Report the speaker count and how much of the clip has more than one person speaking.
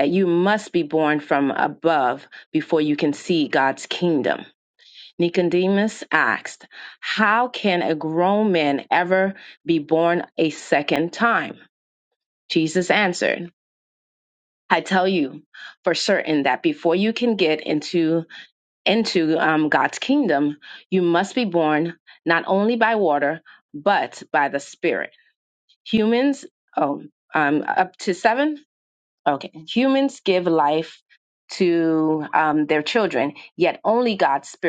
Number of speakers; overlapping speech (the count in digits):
1, no overlap